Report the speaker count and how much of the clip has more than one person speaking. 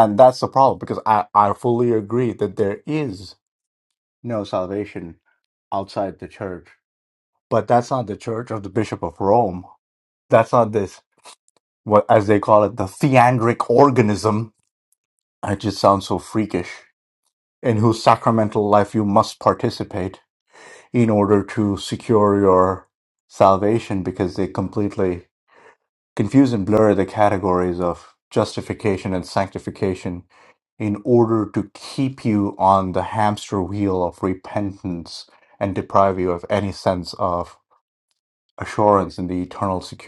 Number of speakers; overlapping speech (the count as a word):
one, no overlap